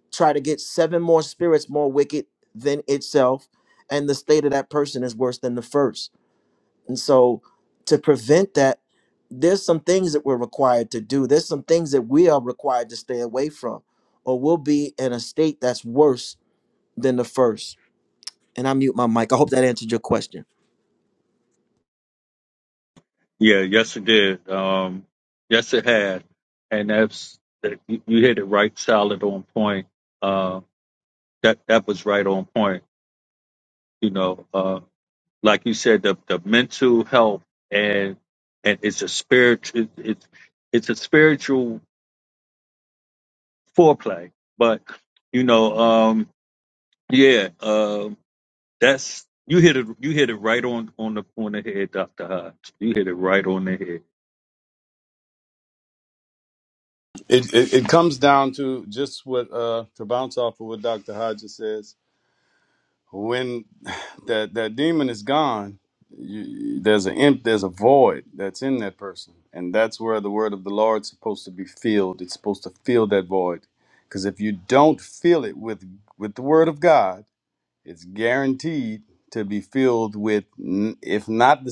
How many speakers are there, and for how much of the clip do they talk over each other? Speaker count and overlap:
three, no overlap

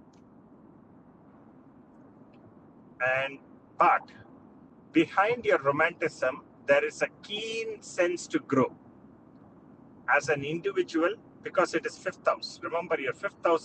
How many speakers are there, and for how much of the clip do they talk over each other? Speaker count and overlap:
one, no overlap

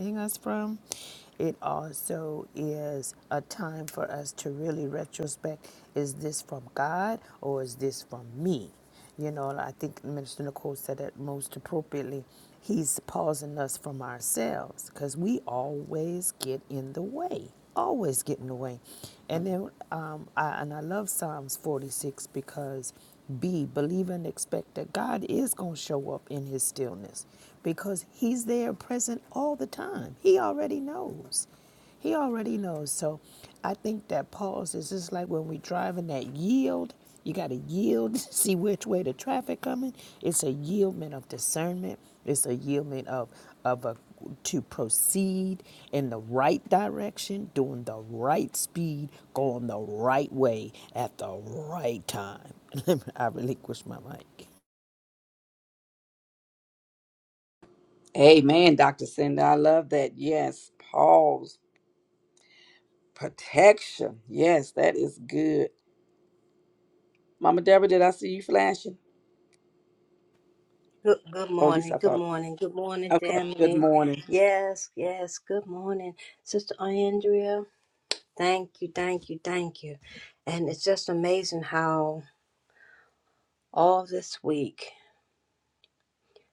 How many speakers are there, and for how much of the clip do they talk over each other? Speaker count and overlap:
three, about 2%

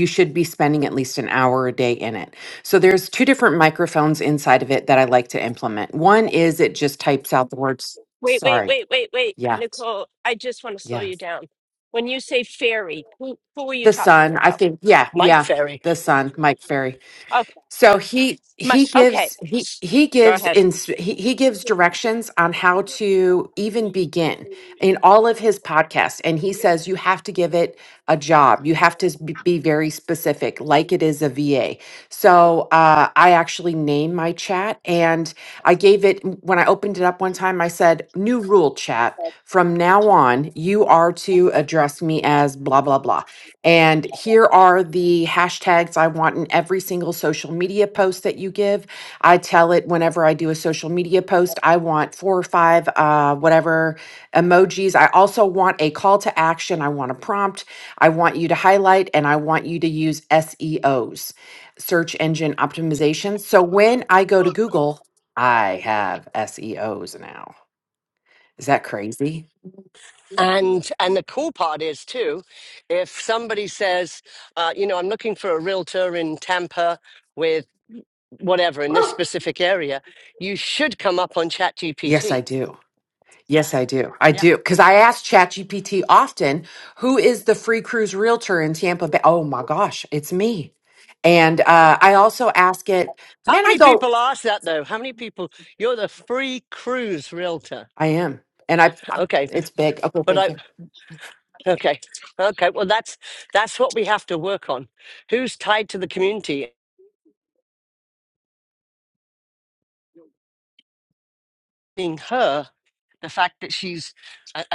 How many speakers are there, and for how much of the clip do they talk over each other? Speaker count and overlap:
three, about 4%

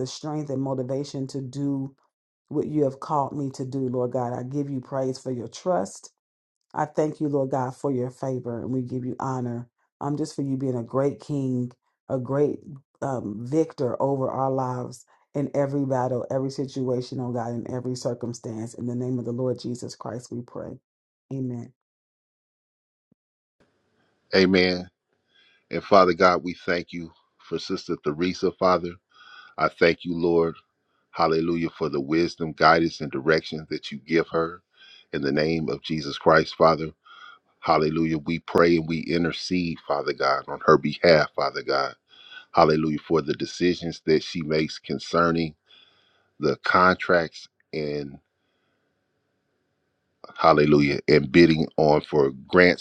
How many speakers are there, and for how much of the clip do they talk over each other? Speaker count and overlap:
two, no overlap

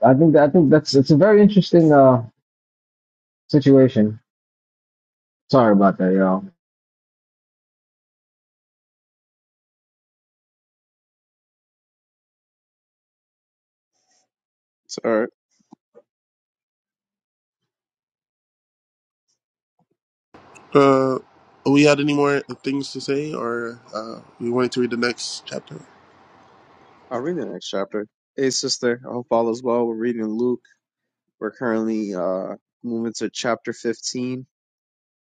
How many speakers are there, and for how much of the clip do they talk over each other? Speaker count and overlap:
three, no overlap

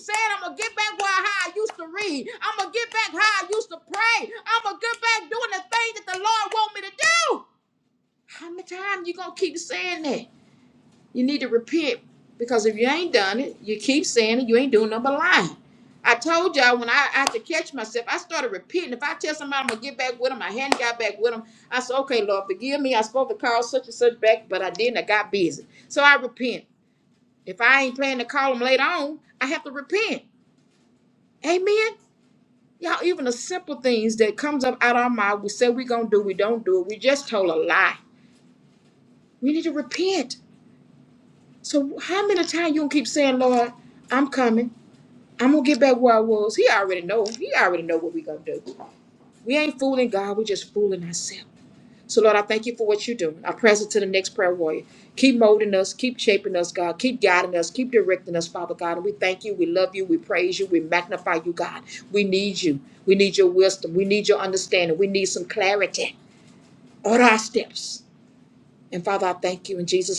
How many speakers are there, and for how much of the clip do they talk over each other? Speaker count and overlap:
one, no overlap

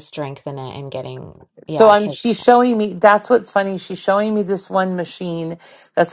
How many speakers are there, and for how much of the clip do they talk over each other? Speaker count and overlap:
two, about 9%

